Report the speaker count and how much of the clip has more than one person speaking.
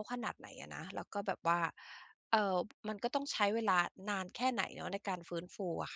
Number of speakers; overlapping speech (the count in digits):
1, no overlap